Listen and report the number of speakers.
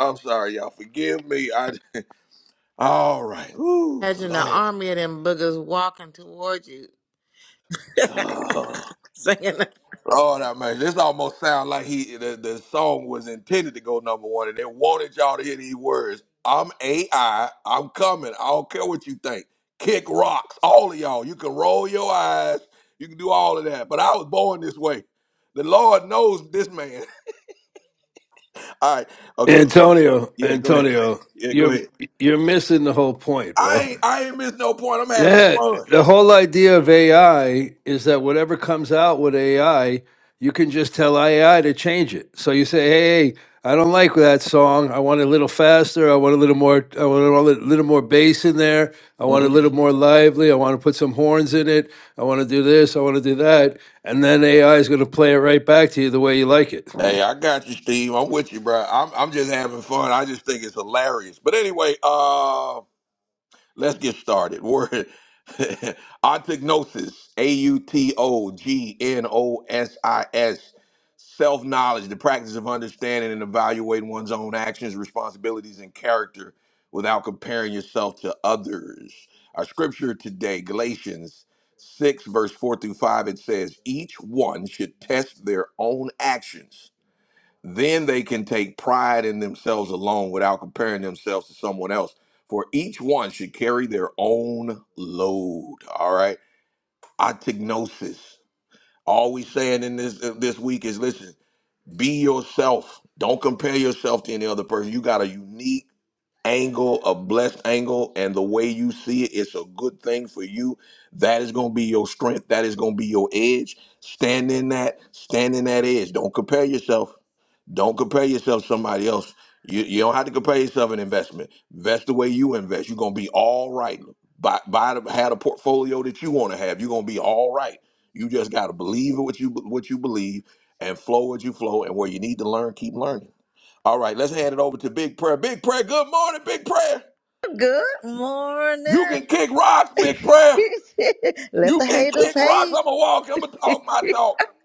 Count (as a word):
four